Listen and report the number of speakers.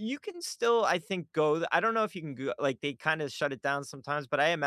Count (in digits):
1